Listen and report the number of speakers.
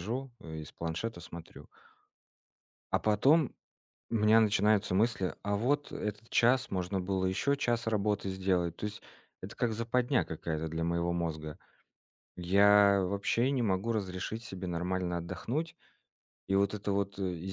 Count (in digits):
1